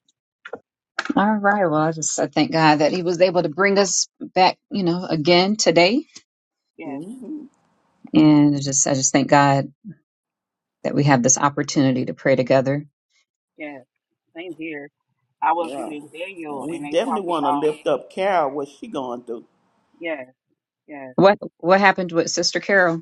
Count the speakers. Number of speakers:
three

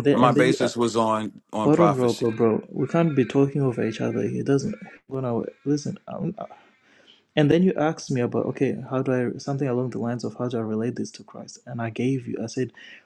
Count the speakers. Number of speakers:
two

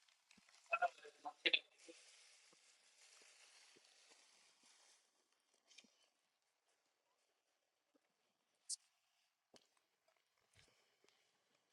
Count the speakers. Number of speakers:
zero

